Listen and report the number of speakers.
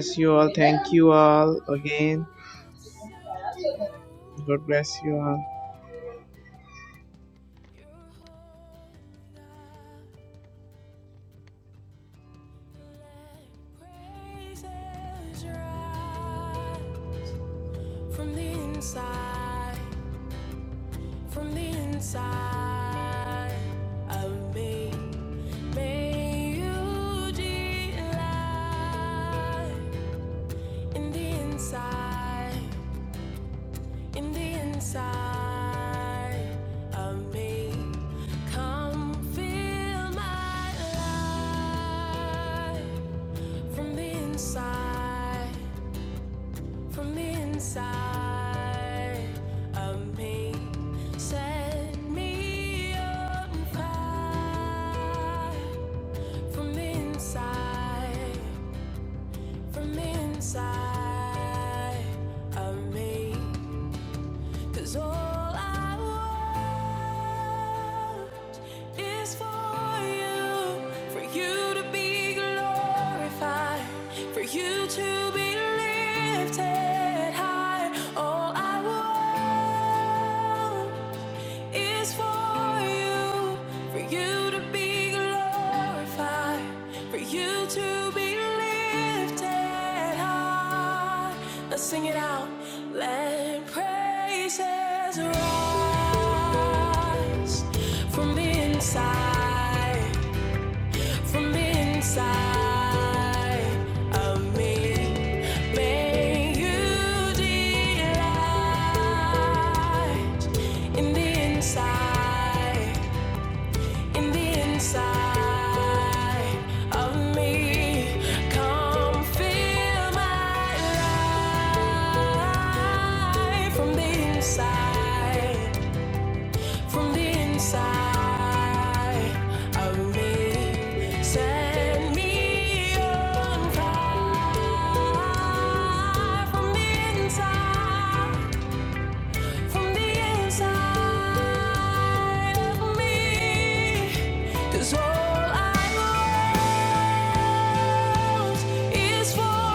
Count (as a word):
two